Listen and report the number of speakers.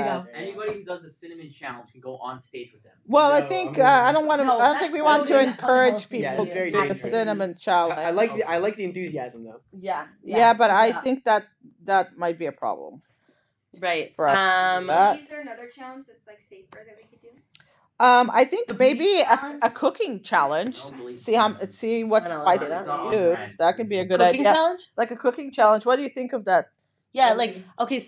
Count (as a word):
five